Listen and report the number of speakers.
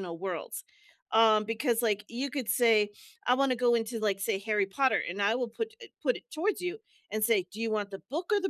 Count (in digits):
1